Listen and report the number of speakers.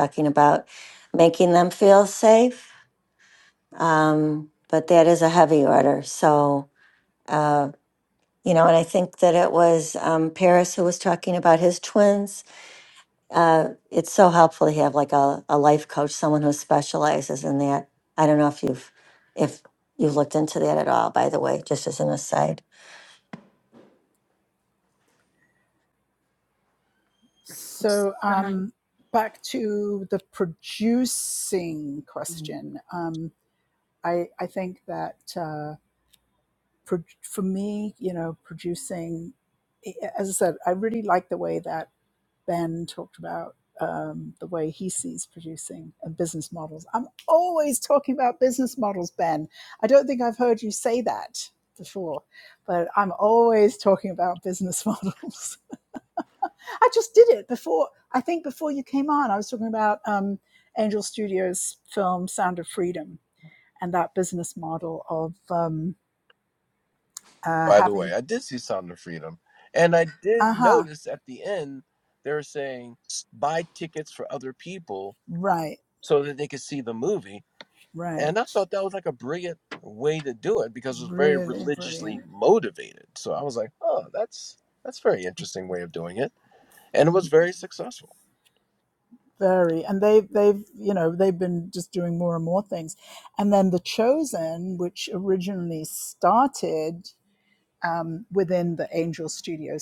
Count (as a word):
three